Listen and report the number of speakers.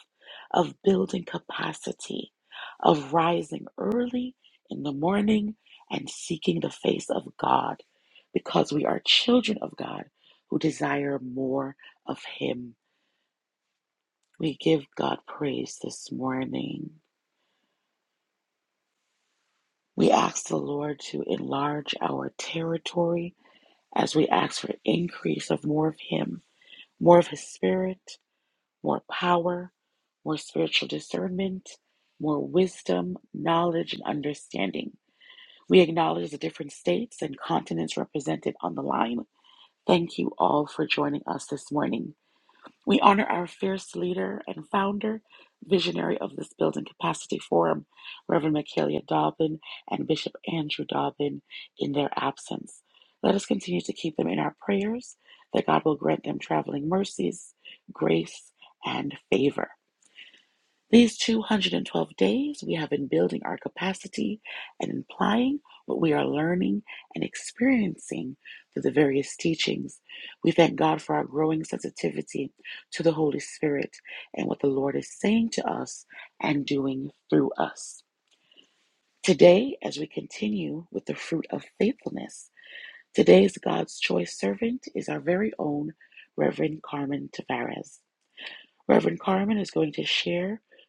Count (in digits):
1